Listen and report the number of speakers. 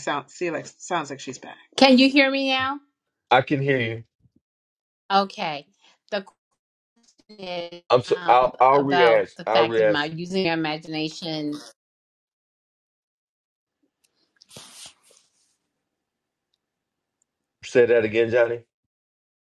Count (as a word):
three